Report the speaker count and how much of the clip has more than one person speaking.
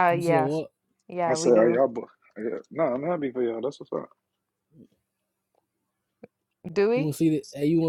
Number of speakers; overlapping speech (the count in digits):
3, about 13%